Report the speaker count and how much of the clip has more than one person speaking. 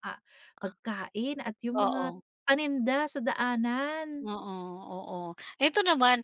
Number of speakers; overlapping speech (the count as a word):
two, about 6%